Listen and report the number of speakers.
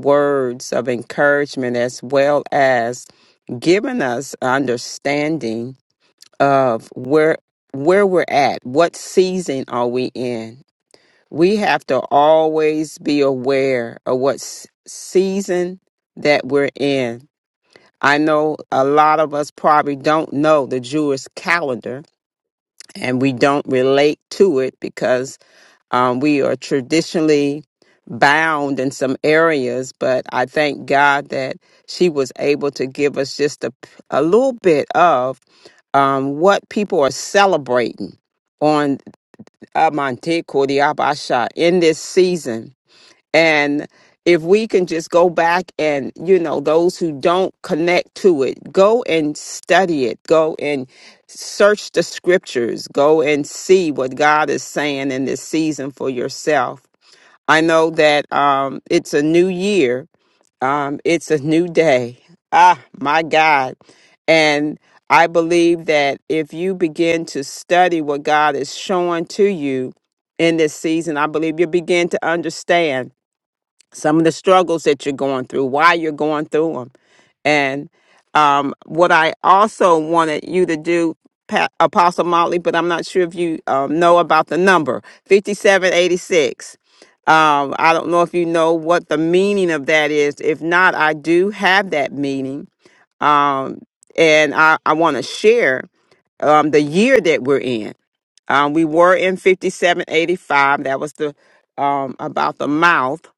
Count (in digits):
1